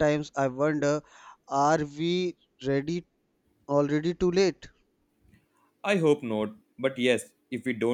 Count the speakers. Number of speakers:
two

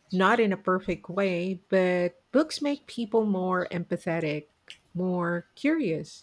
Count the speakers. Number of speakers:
one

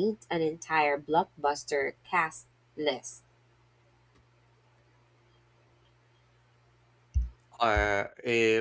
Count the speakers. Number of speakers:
two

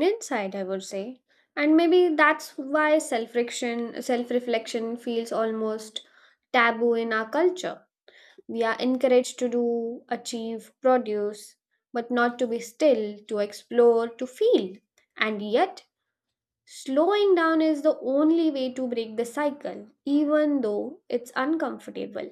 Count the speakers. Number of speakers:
one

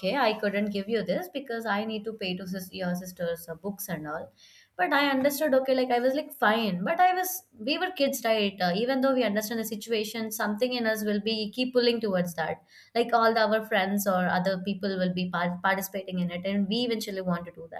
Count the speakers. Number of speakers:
one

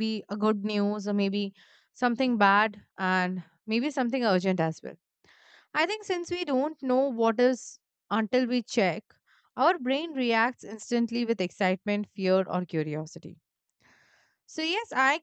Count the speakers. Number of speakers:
one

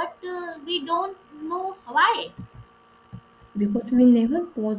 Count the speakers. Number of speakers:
two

